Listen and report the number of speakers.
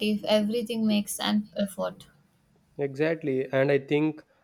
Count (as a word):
two